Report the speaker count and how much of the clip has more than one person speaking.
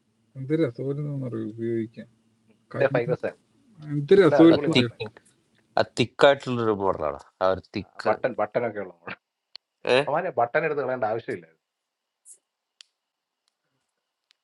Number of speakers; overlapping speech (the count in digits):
3, about 6%